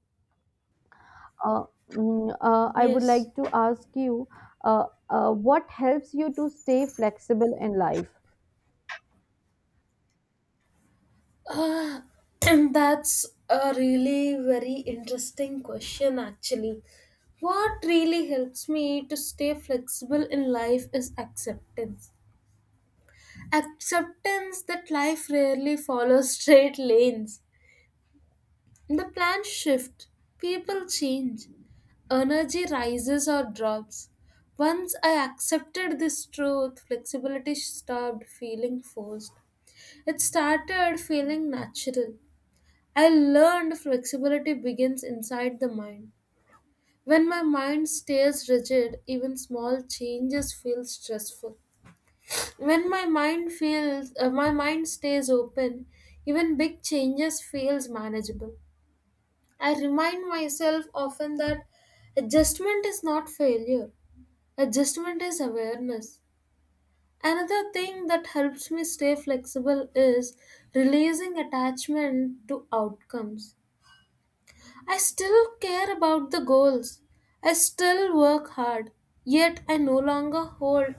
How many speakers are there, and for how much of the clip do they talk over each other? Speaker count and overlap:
2, under 1%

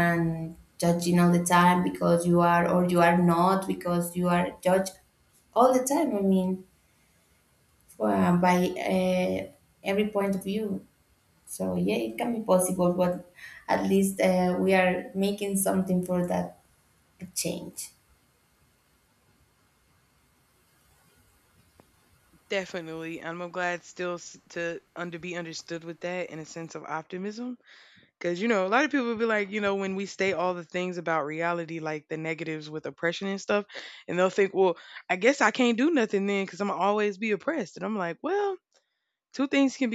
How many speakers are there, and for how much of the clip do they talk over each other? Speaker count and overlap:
2, no overlap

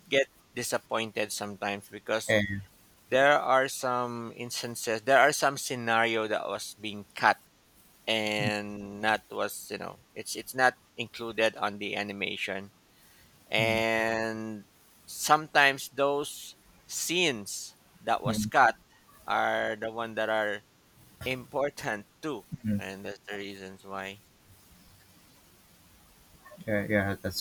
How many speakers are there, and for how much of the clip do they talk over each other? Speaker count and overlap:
2, about 2%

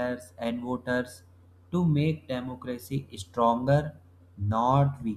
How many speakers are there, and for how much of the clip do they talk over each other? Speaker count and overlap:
1, no overlap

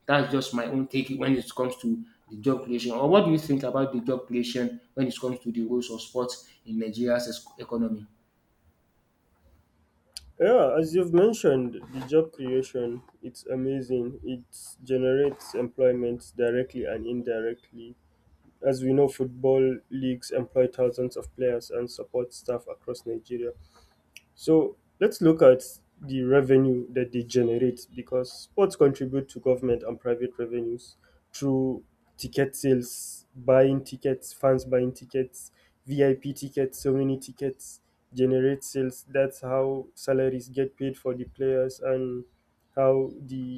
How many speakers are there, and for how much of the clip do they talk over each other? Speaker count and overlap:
2, no overlap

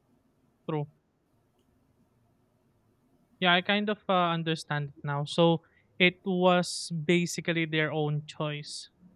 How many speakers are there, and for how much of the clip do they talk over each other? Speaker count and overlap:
1, no overlap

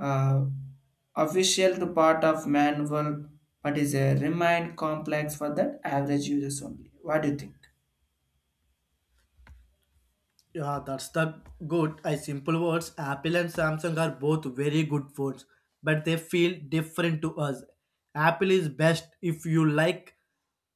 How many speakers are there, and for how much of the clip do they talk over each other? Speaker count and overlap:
2, no overlap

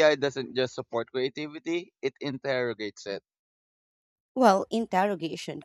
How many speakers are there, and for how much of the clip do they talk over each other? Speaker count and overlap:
2, no overlap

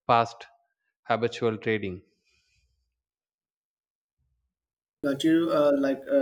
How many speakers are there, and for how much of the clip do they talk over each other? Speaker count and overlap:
2, no overlap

